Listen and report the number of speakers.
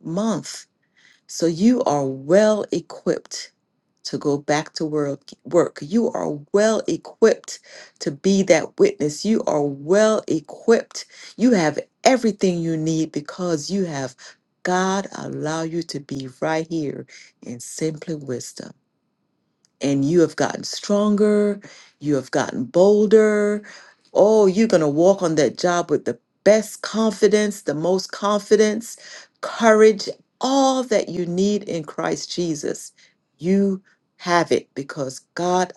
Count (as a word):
one